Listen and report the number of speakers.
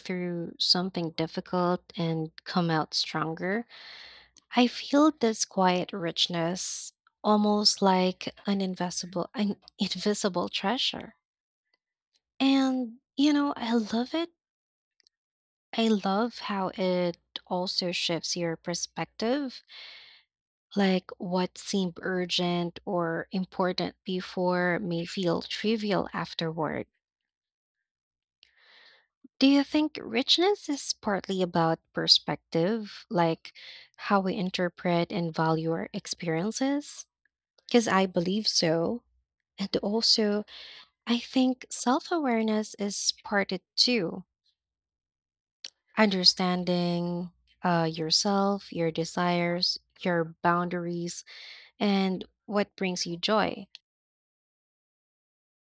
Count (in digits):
1